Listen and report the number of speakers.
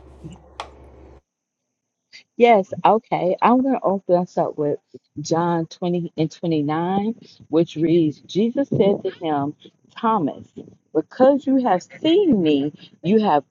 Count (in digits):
1